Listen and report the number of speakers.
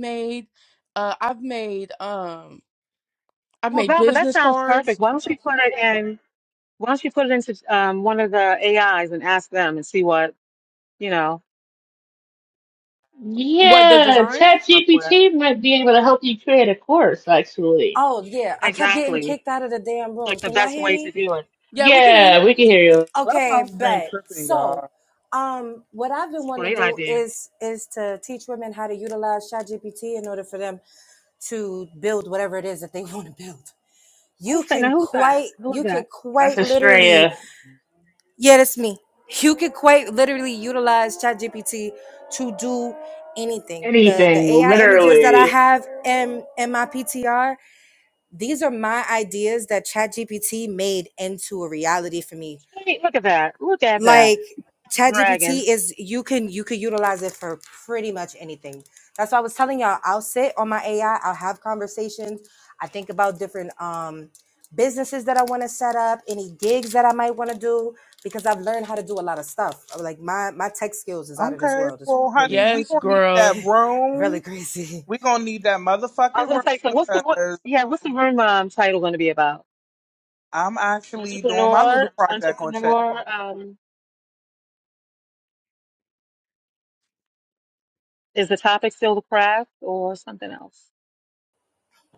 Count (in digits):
5